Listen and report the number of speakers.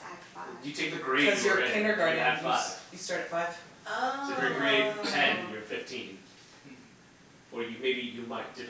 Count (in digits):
3